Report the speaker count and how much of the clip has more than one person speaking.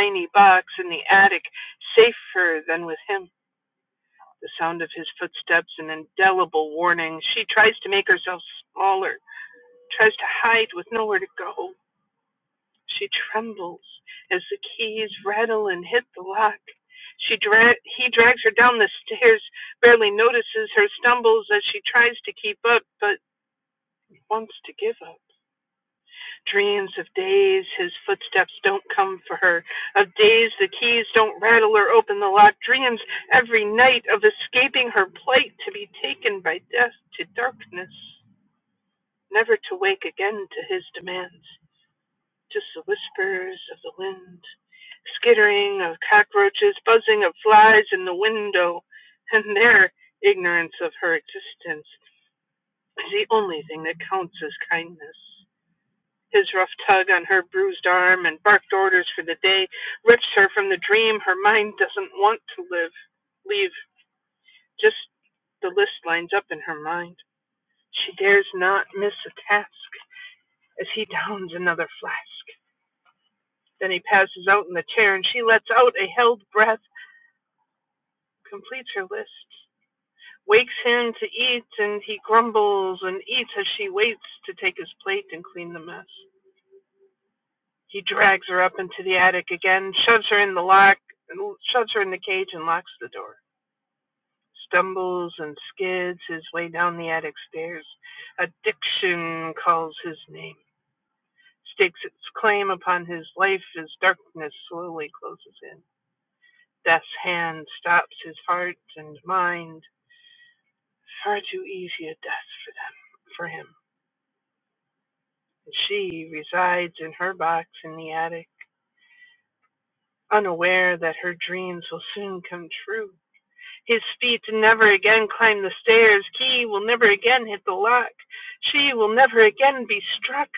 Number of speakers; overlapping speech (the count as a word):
one, no overlap